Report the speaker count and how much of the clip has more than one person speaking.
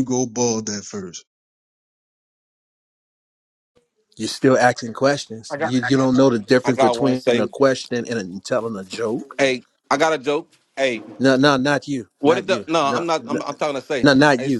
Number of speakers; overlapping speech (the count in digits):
3, about 18%